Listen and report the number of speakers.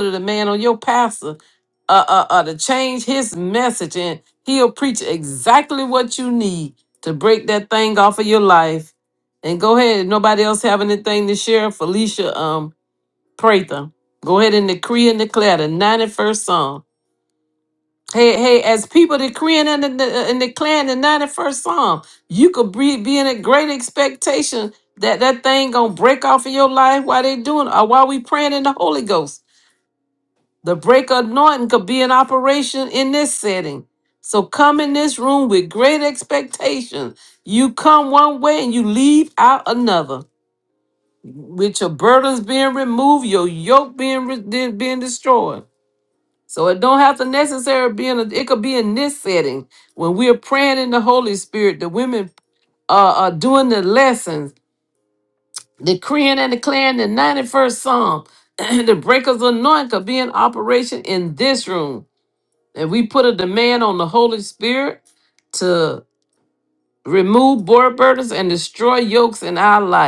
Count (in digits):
1